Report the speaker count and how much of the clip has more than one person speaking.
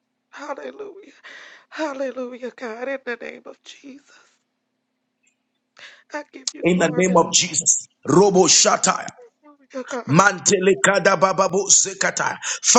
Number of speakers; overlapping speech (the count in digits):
2, about 6%